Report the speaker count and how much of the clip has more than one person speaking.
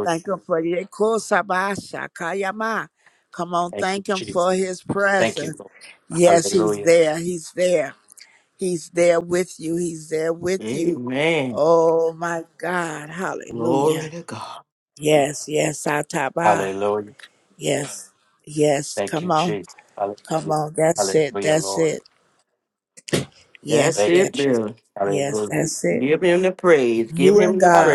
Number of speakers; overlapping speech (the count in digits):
3, about 25%